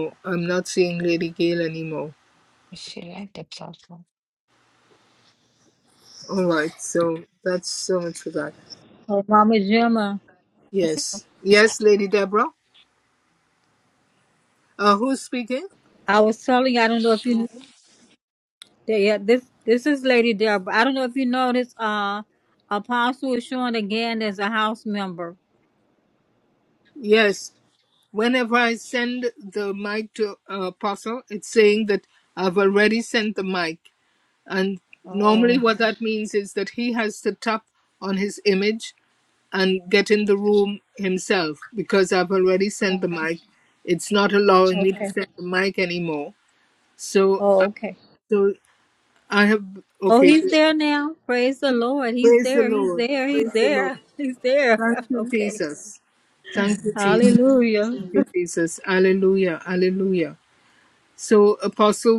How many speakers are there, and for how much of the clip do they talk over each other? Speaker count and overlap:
3, about 8%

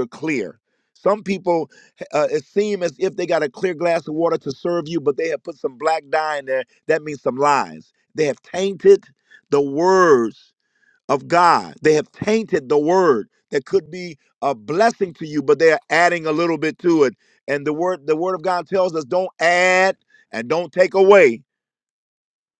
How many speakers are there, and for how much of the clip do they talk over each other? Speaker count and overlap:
1, no overlap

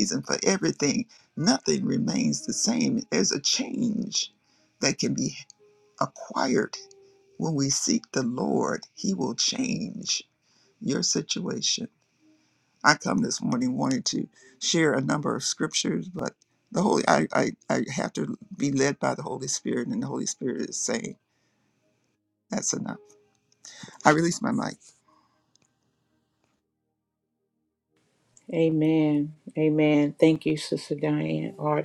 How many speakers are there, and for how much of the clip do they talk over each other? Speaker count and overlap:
2, no overlap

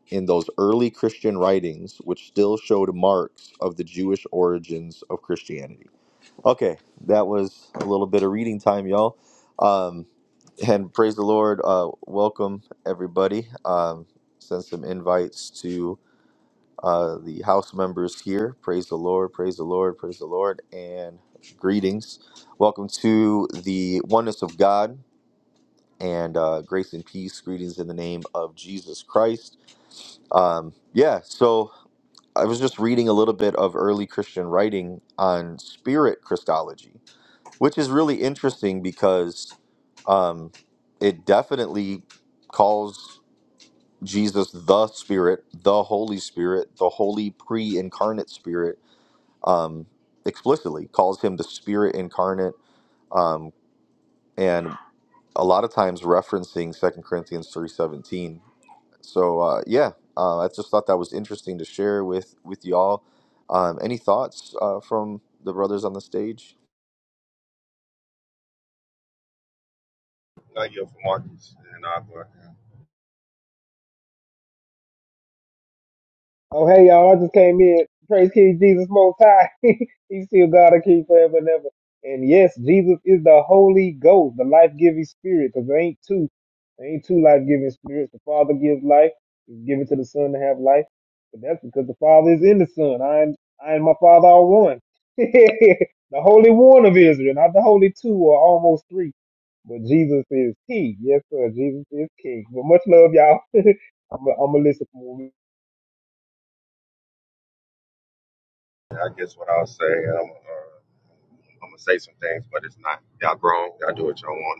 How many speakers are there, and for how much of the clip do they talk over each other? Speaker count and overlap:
3, no overlap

